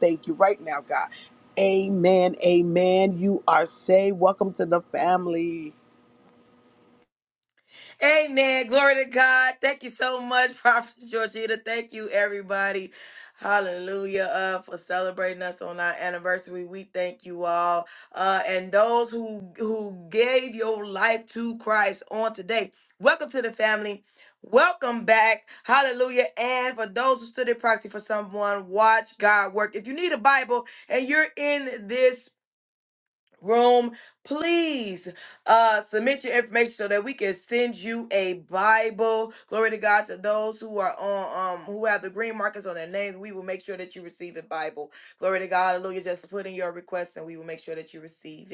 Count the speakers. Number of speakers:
2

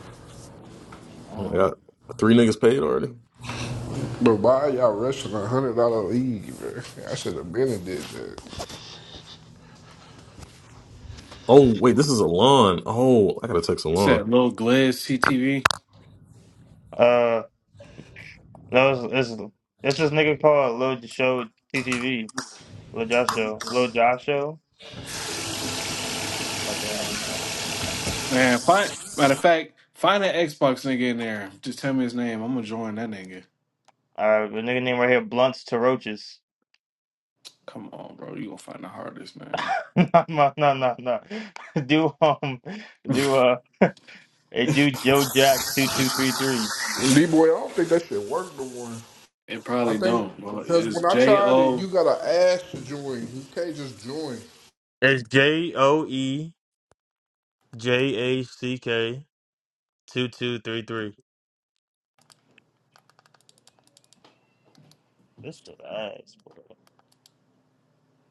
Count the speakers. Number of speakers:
4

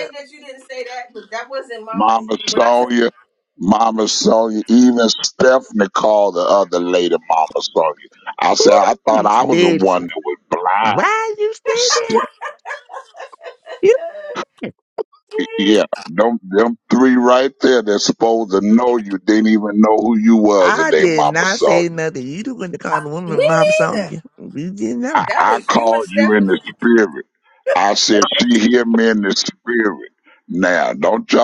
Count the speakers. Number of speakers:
3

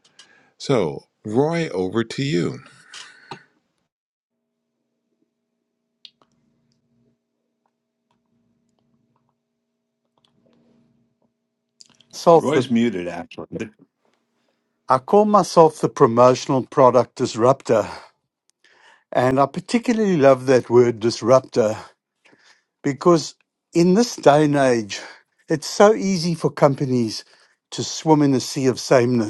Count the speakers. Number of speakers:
3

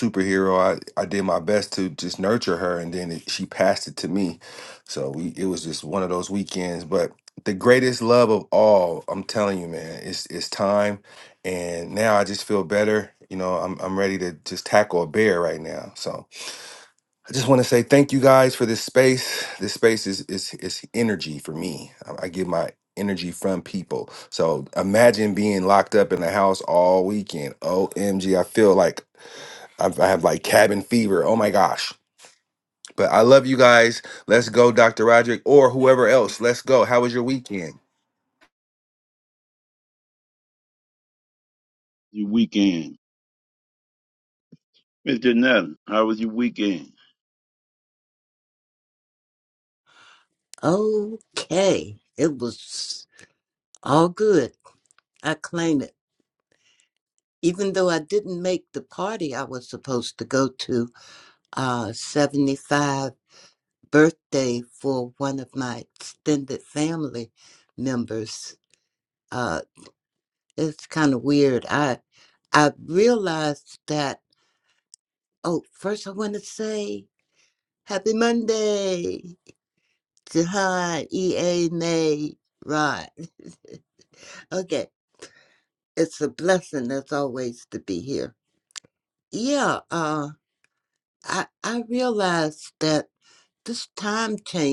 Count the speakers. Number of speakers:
3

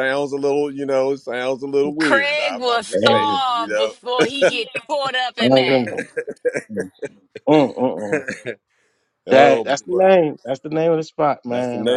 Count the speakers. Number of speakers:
3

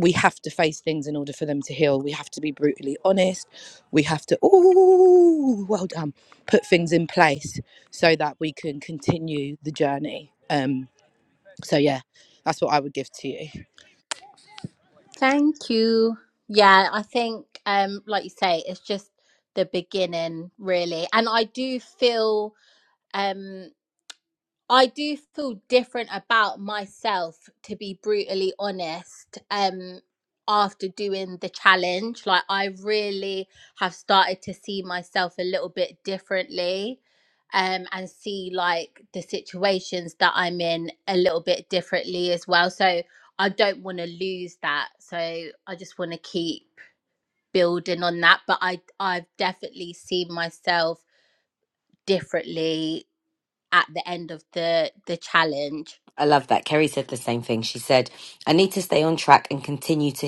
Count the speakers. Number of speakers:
3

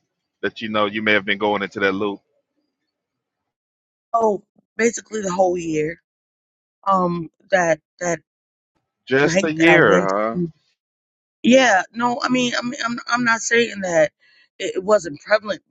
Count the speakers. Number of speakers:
2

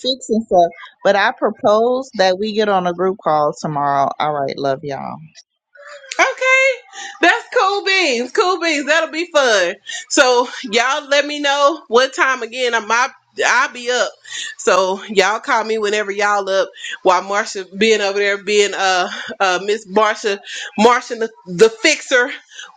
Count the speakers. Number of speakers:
2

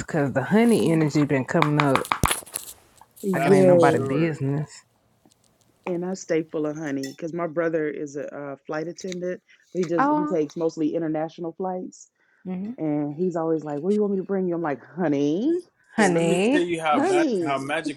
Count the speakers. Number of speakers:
3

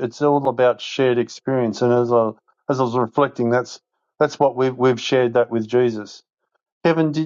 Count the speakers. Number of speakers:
1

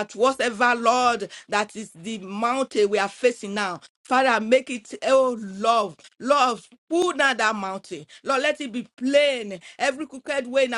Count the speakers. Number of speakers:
1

